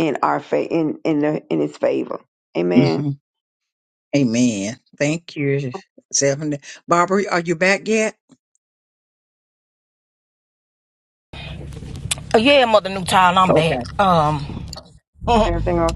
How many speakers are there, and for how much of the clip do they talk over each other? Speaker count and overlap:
three, about 4%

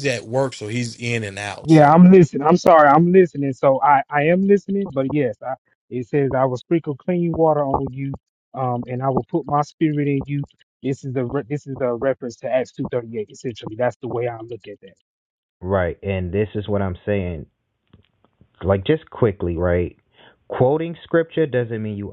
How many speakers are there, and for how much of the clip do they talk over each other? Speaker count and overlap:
three, about 2%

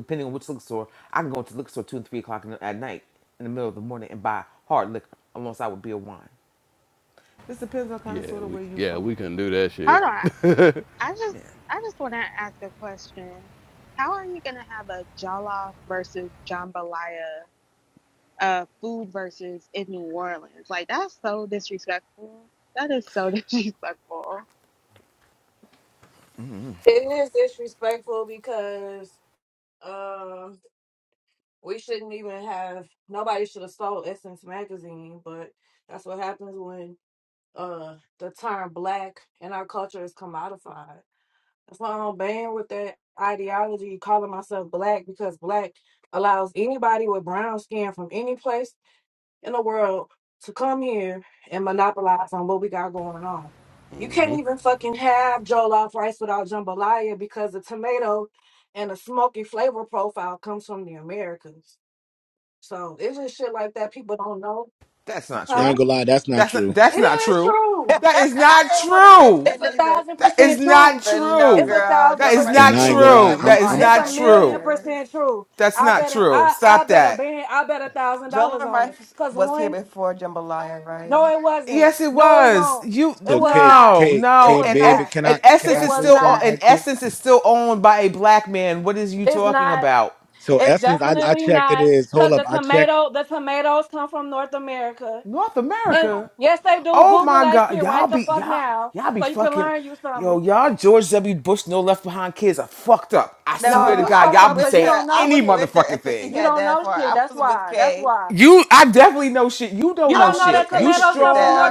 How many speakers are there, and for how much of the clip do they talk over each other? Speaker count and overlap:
six, about 26%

